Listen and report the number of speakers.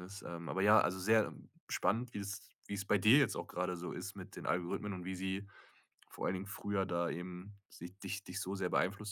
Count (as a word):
one